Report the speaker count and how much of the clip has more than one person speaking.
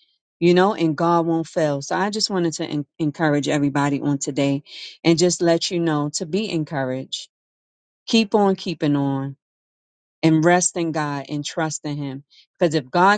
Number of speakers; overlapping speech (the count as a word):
one, no overlap